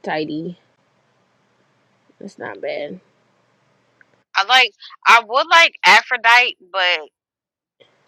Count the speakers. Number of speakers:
2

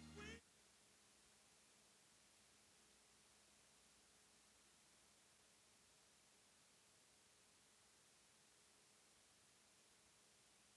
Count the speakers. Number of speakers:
0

